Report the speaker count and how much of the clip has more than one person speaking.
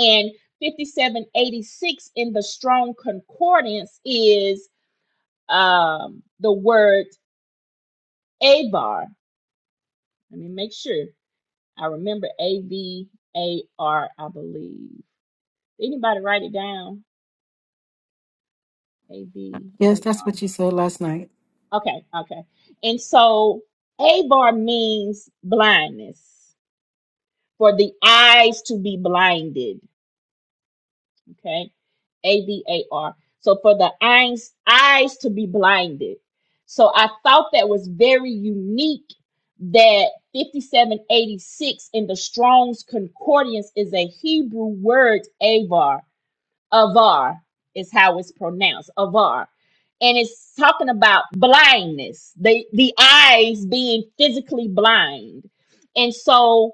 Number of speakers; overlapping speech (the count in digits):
2, about 1%